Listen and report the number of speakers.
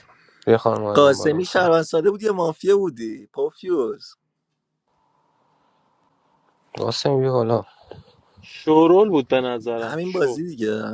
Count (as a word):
three